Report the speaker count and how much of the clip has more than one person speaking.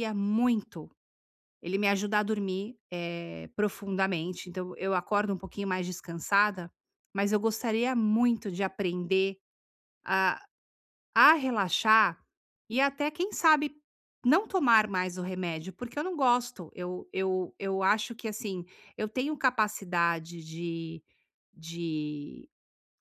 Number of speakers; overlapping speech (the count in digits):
1, no overlap